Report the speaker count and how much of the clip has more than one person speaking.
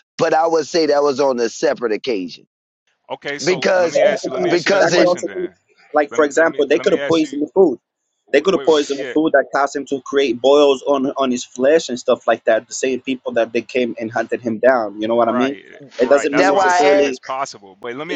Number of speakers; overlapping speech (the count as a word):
three, about 32%